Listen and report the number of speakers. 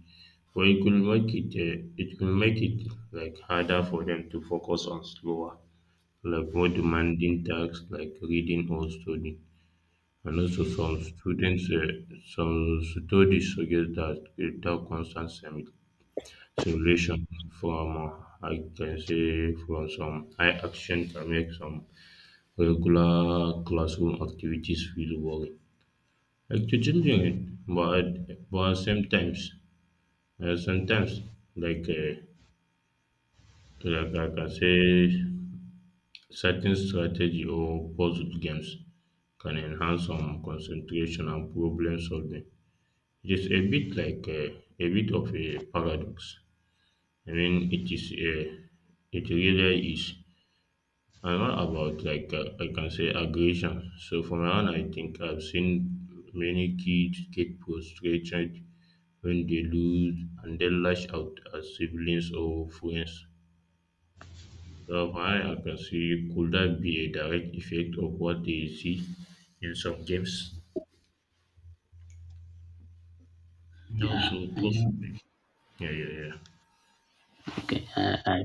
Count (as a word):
two